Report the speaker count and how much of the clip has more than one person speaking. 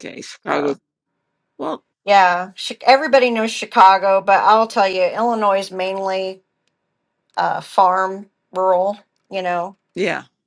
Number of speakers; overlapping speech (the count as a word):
two, about 2%